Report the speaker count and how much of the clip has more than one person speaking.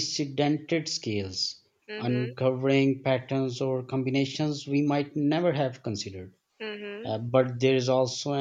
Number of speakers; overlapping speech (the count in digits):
2, about 5%